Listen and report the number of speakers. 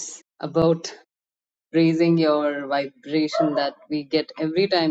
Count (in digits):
1